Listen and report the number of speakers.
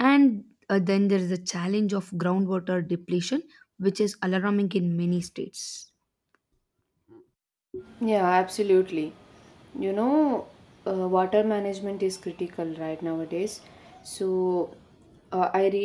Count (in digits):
2